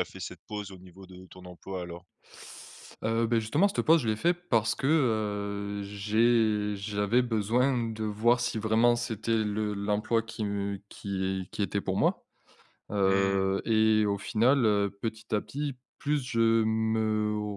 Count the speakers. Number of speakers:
2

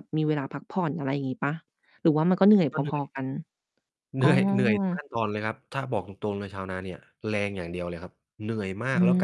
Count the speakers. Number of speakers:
2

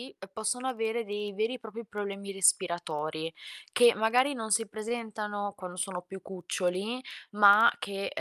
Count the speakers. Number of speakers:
1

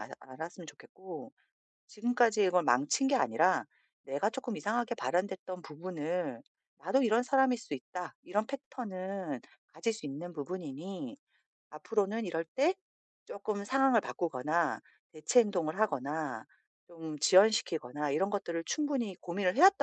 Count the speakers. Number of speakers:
1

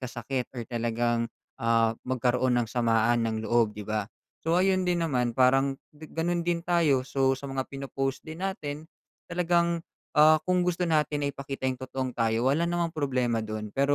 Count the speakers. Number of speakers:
1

